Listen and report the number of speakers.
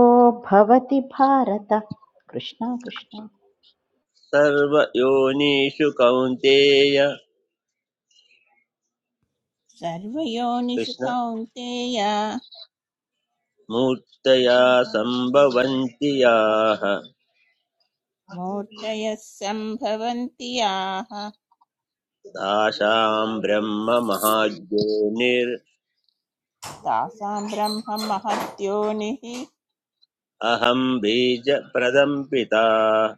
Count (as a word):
three